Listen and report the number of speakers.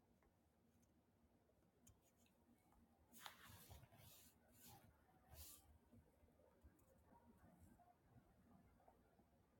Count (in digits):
0